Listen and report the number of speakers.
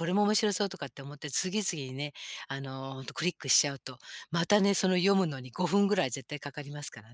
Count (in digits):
1